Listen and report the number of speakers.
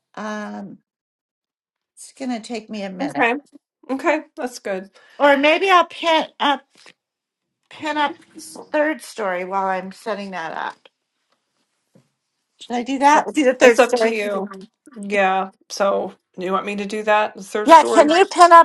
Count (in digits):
2